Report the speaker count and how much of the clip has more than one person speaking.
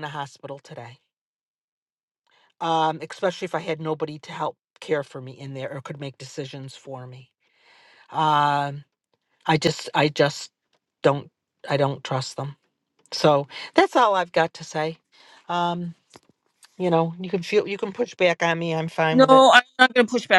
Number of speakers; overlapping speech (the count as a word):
two, about 2%